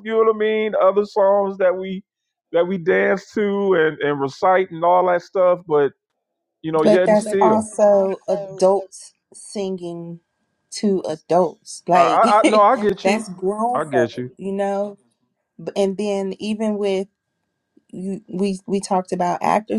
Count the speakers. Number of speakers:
2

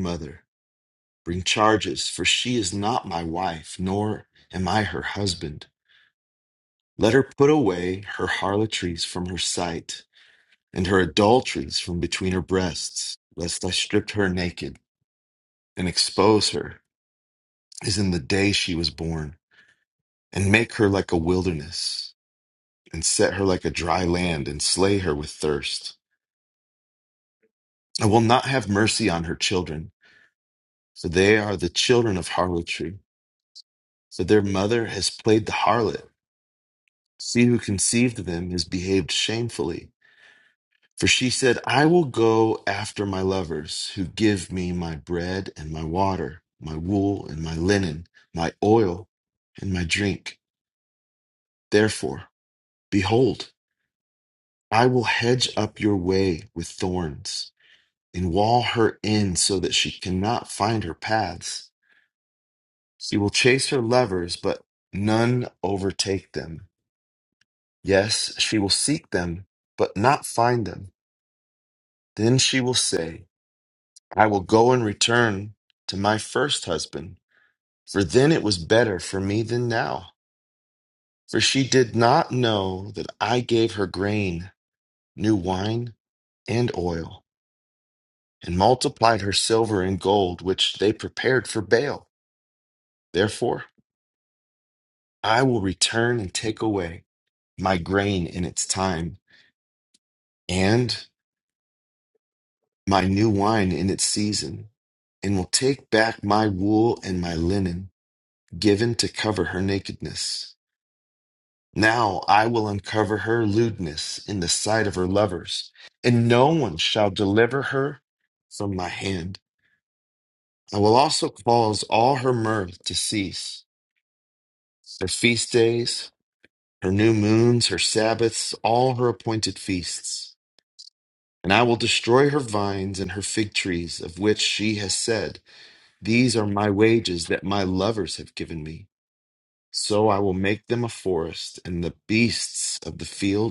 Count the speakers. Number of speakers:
1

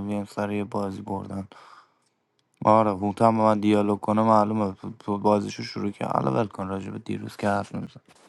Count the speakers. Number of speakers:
1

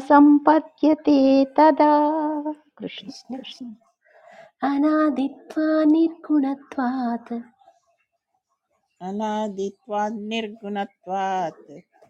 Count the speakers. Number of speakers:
3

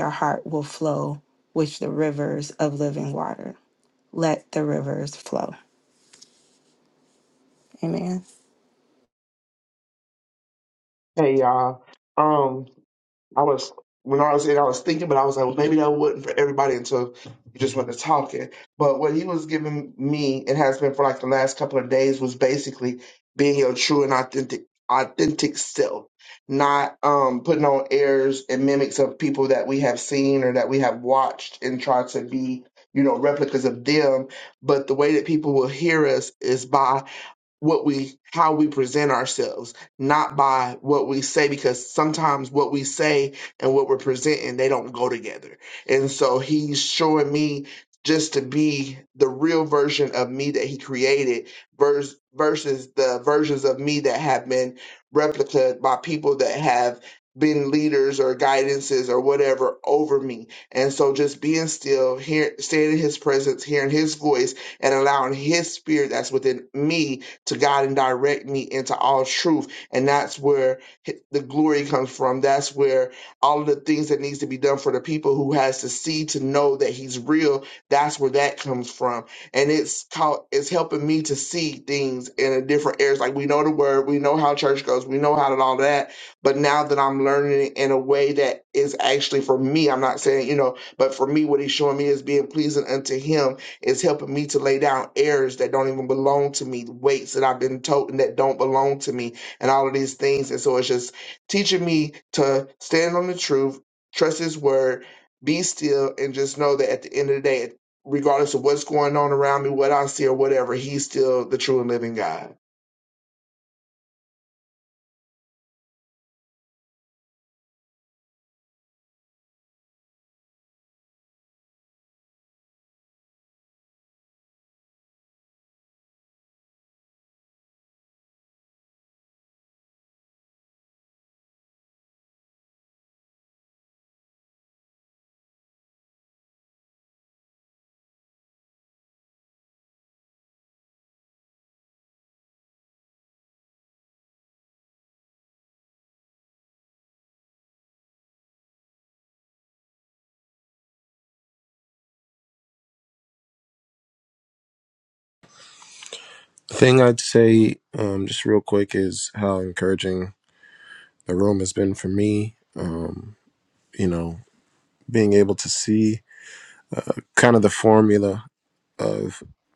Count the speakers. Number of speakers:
3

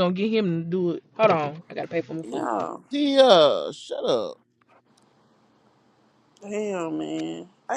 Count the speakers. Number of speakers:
3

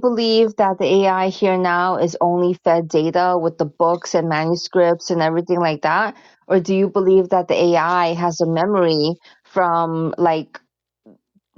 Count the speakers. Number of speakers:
1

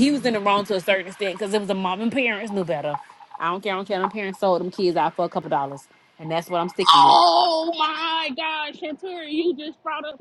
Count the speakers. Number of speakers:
2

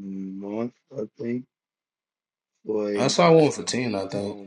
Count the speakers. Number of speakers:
2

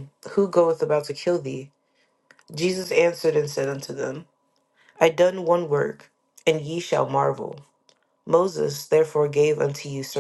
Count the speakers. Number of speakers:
1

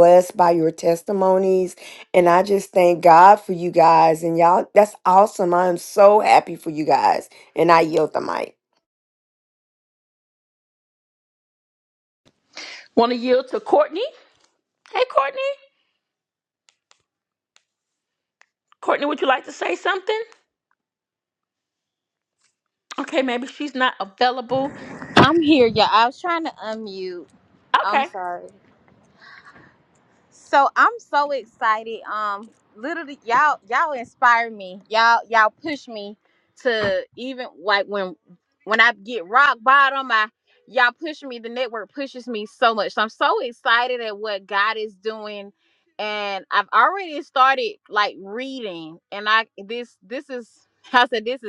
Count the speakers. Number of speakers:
3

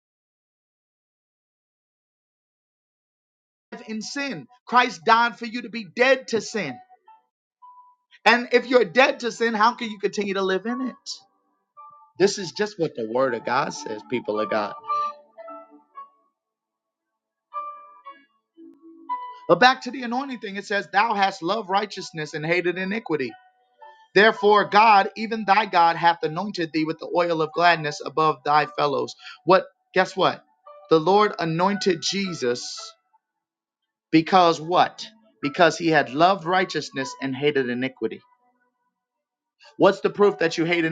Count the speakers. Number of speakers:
1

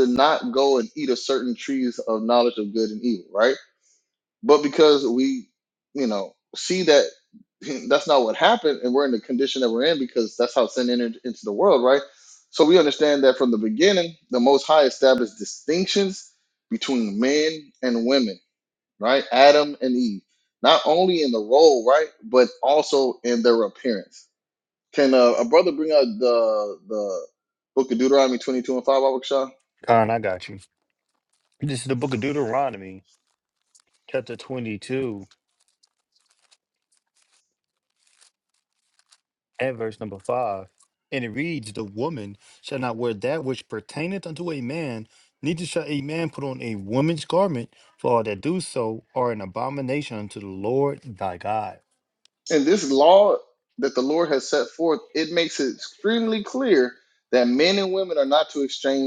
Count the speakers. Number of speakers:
2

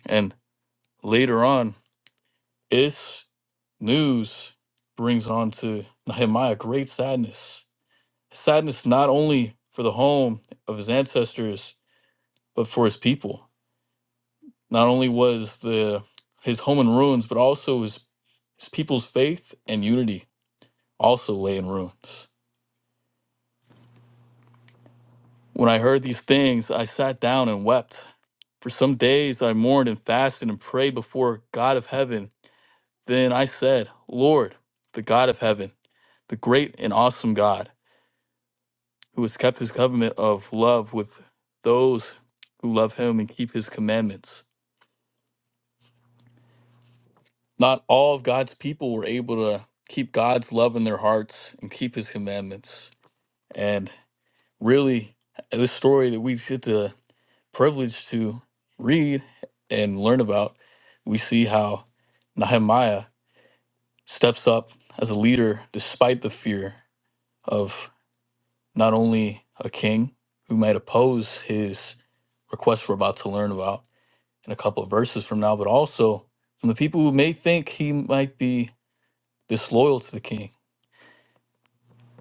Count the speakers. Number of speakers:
1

